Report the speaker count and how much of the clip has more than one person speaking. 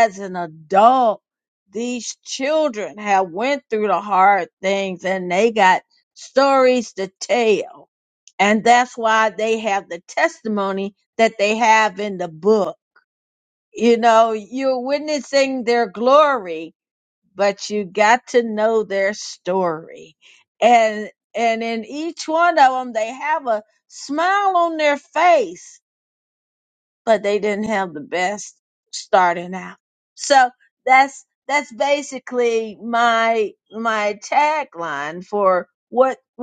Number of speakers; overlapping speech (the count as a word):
one, no overlap